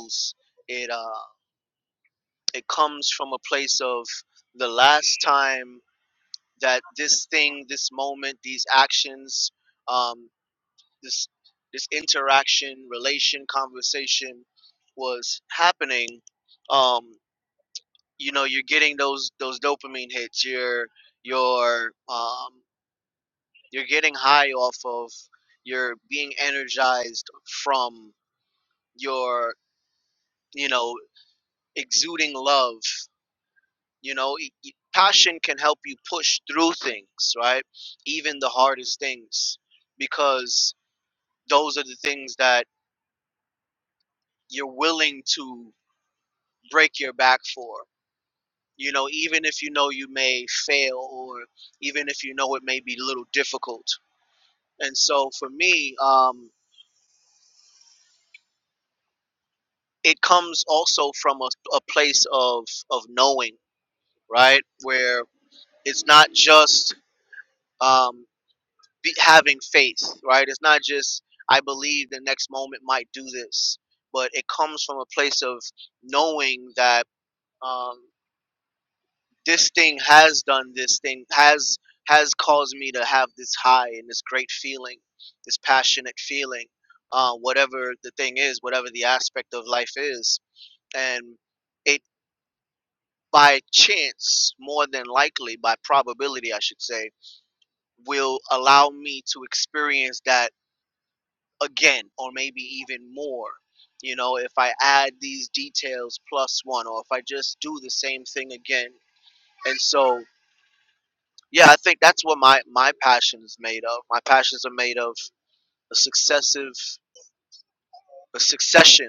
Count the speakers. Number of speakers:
1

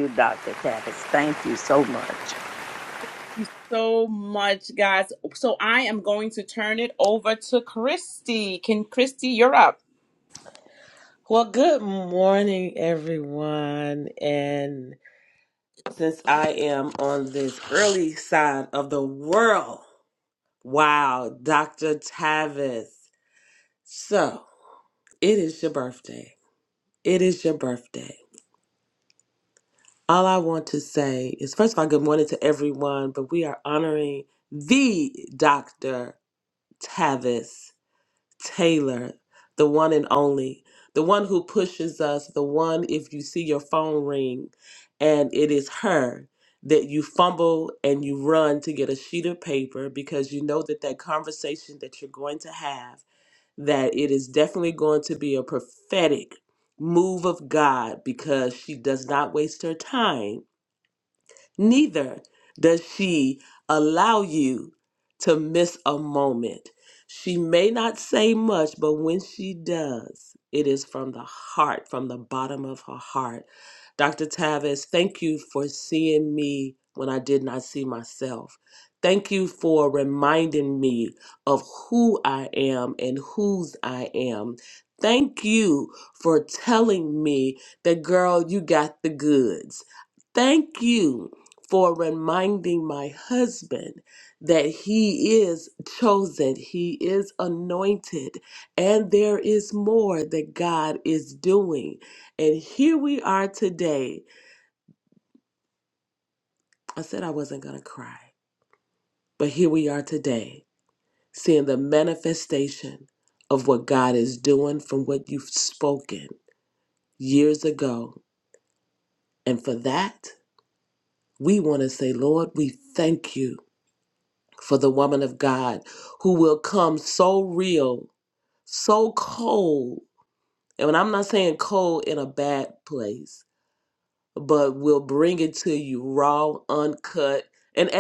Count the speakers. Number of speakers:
3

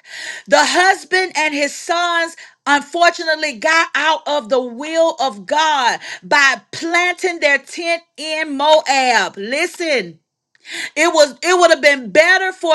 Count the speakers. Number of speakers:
1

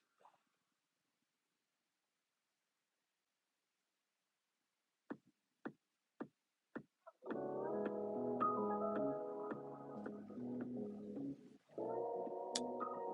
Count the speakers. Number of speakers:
0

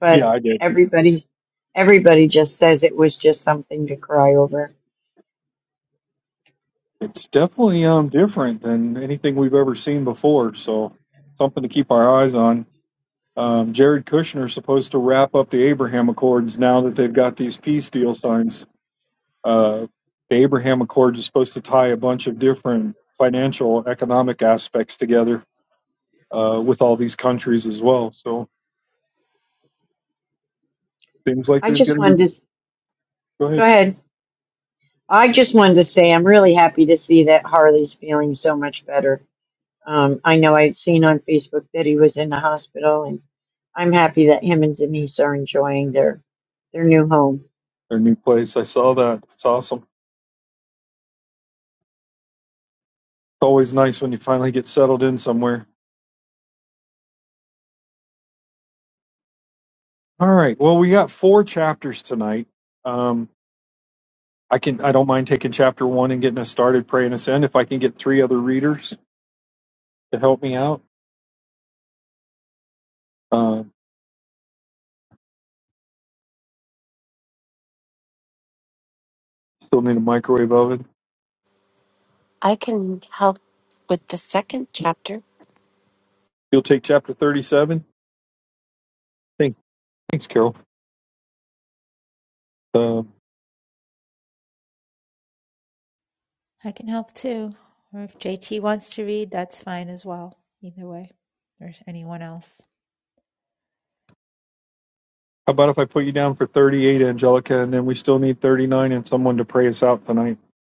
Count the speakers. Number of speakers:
4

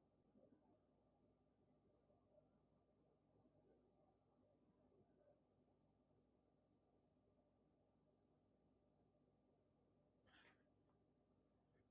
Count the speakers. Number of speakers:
0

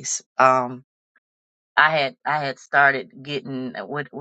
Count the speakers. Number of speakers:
1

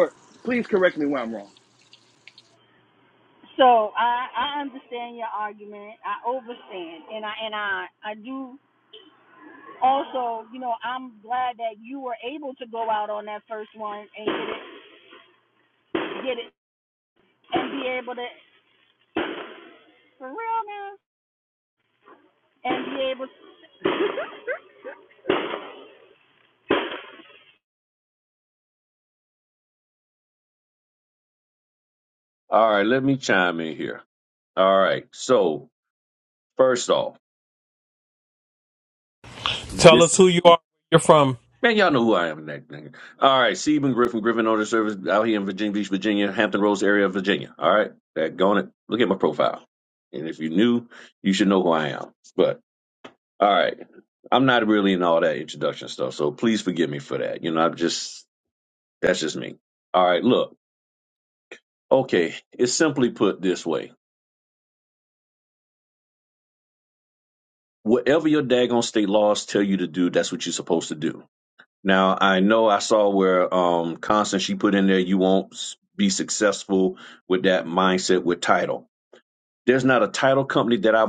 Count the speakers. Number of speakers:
4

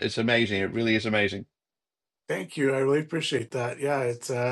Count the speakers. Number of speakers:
2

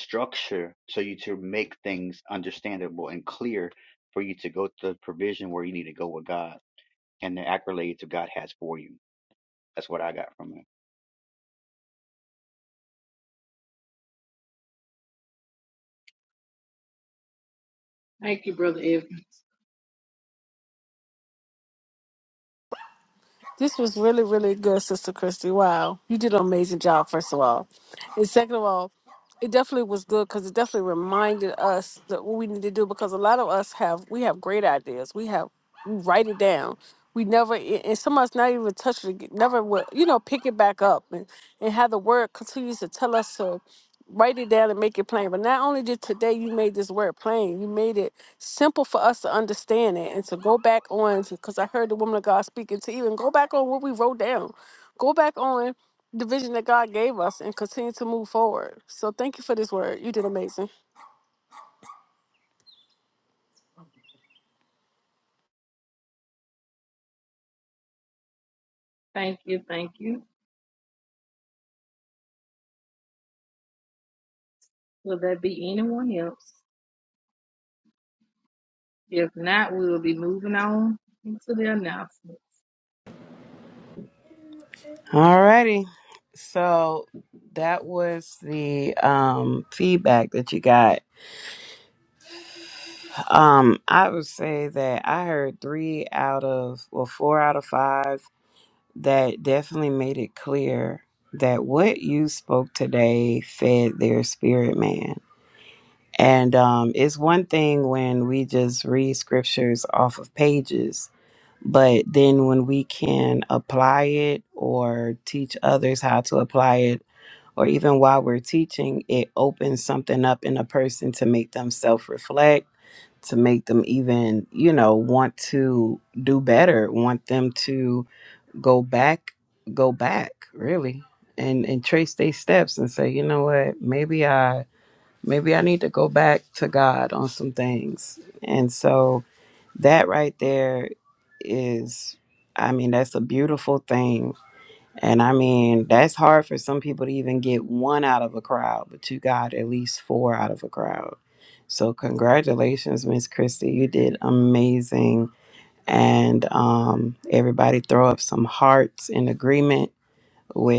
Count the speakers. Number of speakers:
4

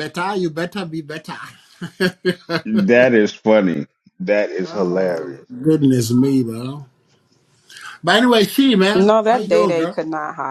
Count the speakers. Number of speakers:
3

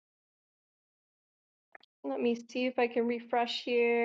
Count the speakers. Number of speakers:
1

